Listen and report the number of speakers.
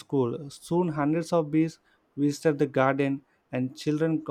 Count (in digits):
1